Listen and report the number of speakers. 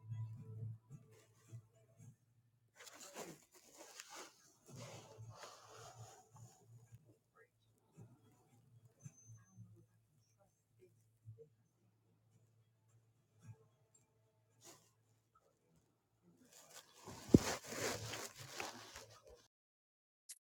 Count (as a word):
zero